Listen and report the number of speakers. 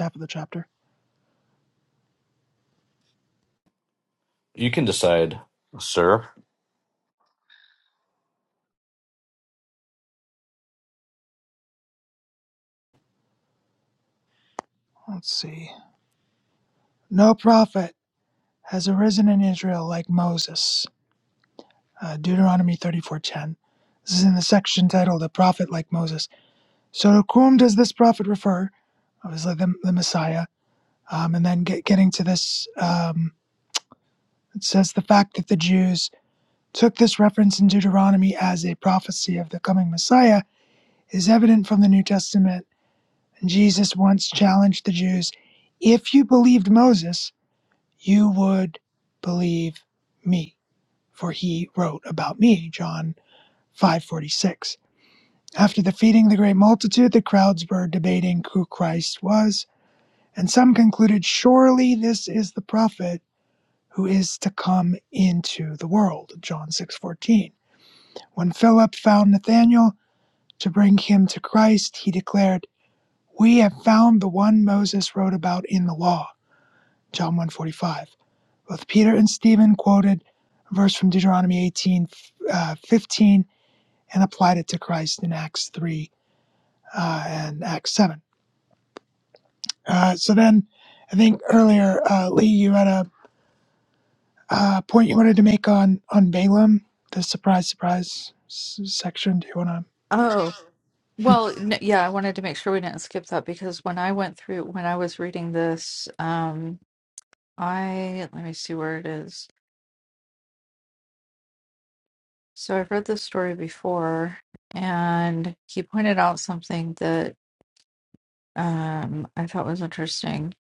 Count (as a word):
three